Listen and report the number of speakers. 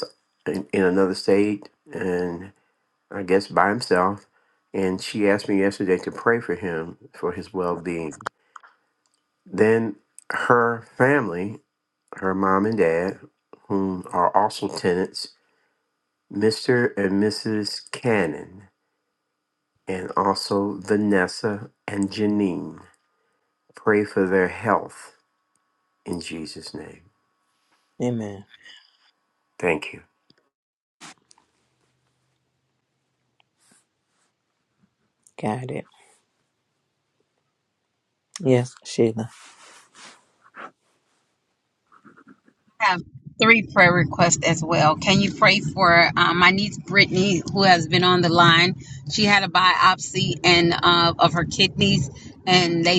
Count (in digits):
3